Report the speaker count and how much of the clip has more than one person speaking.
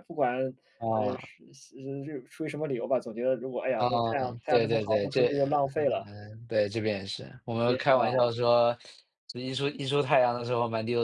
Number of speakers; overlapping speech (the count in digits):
2, about 22%